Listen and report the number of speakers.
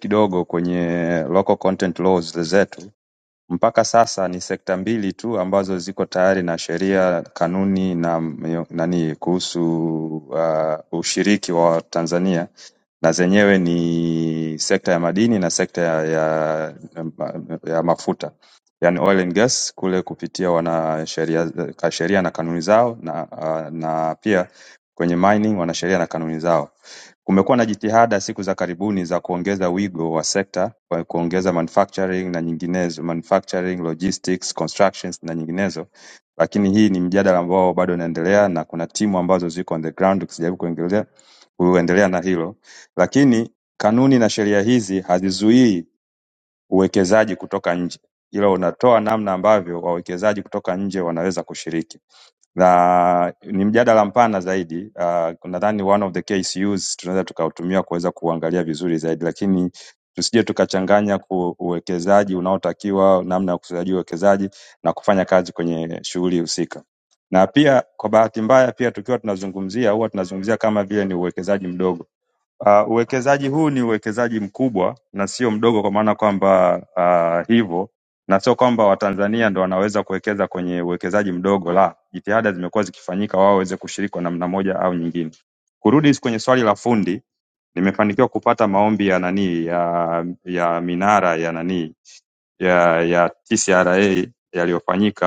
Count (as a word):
one